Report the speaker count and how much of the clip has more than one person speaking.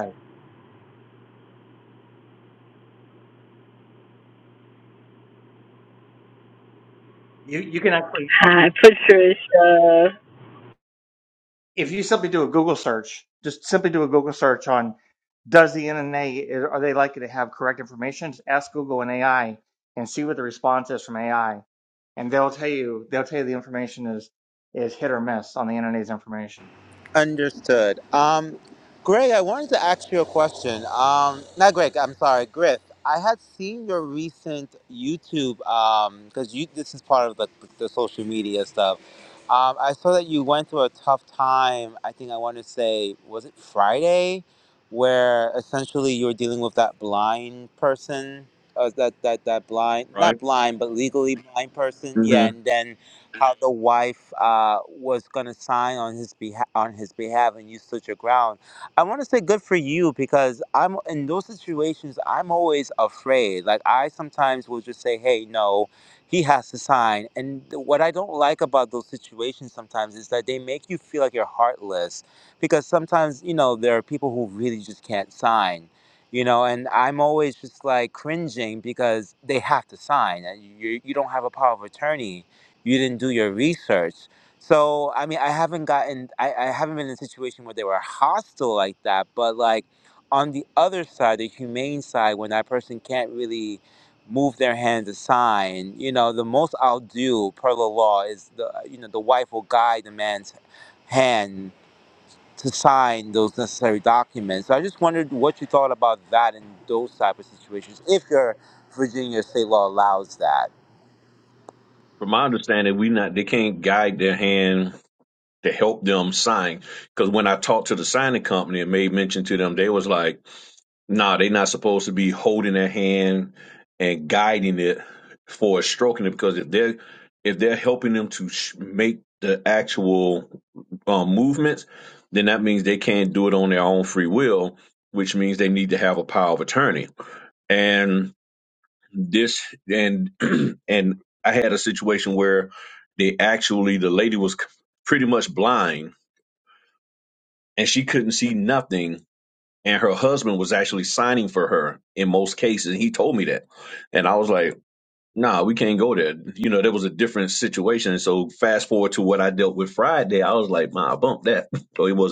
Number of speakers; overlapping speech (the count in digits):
4, under 1%